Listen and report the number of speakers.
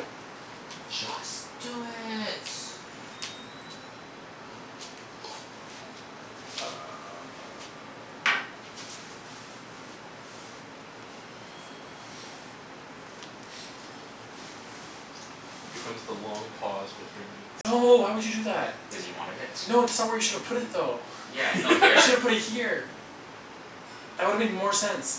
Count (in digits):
3